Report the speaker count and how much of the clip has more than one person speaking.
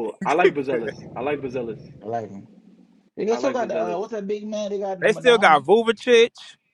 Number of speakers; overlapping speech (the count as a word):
three, about 20%